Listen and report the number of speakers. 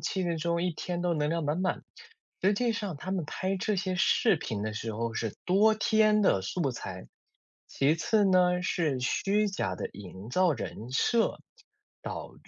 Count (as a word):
one